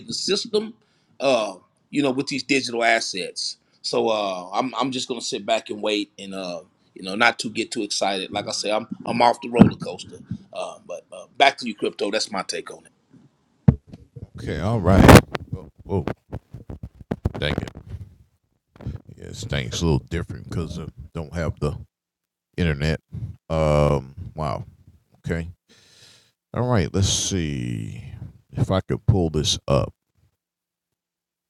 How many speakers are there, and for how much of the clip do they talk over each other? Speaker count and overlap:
two, no overlap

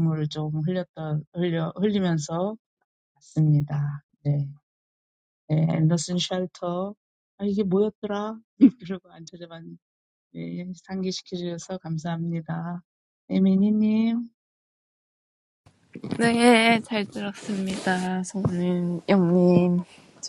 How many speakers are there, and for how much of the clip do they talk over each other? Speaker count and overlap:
two, no overlap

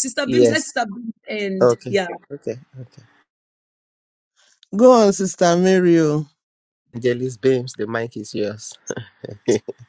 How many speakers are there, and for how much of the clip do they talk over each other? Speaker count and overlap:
three, about 5%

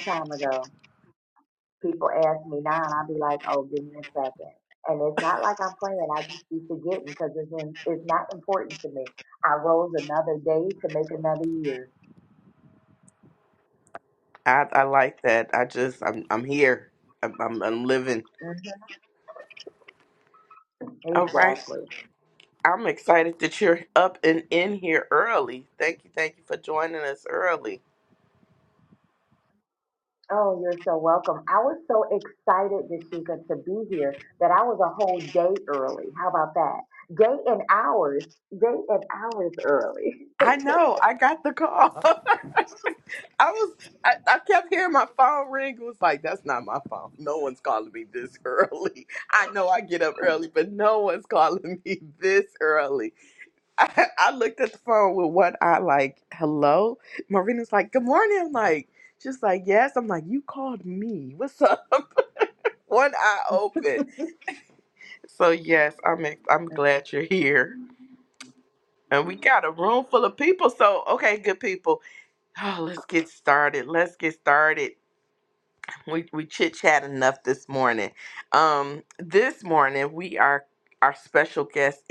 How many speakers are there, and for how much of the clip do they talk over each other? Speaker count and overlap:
two, about 1%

